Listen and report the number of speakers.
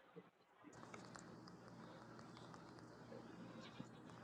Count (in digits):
0